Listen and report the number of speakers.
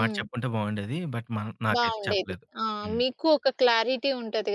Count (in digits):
2